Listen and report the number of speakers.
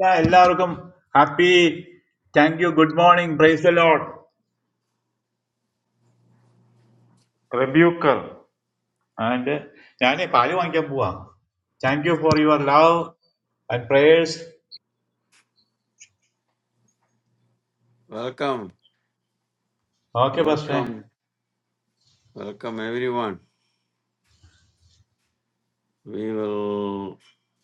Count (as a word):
two